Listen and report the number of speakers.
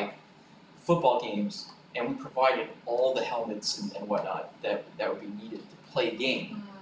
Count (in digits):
1